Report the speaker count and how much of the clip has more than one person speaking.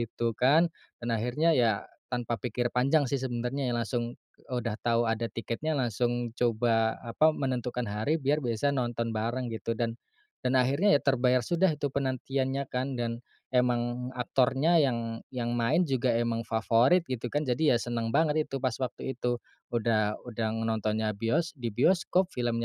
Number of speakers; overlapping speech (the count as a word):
one, no overlap